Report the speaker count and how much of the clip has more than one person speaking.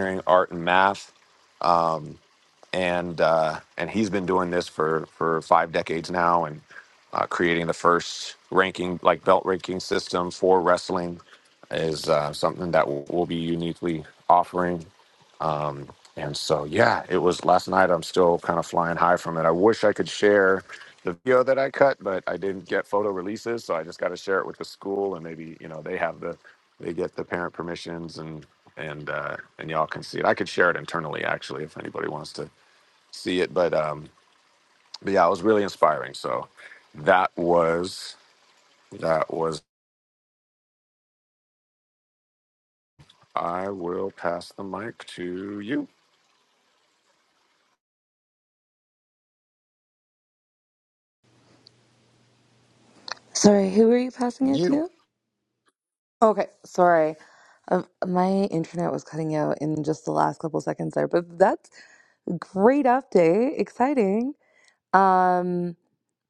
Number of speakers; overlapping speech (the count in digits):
2, about 1%